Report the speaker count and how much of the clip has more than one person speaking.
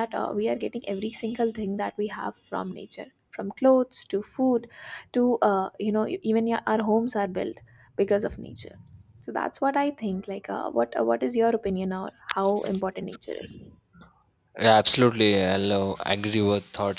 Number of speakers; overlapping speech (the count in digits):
2, under 1%